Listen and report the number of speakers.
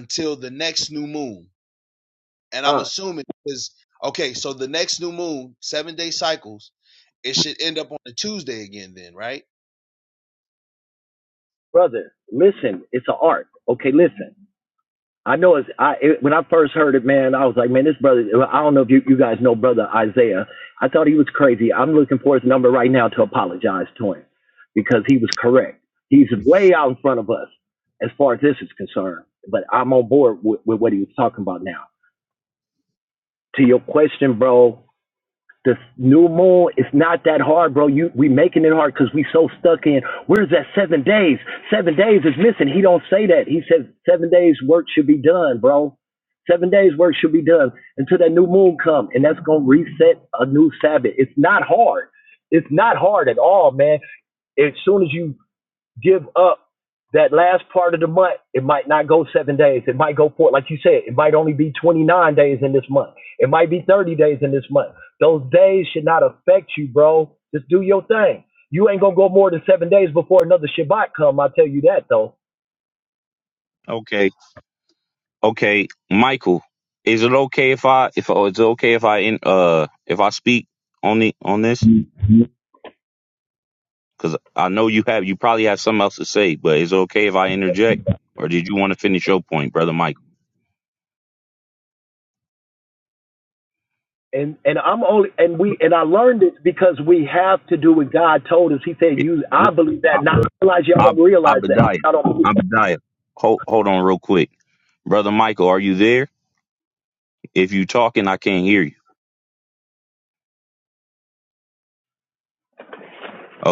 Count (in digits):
3